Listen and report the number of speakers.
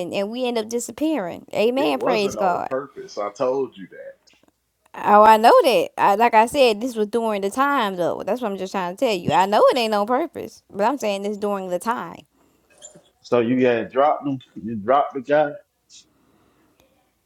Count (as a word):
three